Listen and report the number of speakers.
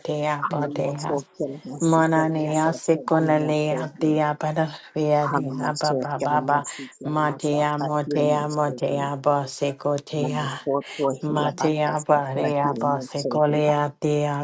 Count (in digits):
2